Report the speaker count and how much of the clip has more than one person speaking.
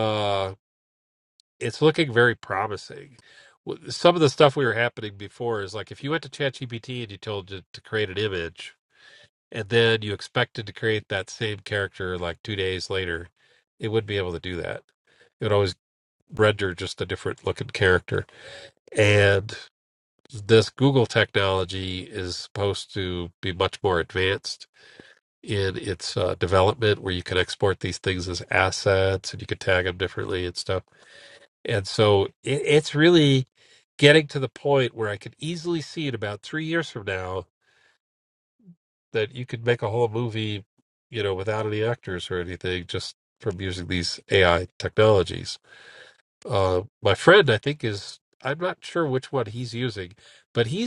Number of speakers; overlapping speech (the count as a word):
one, no overlap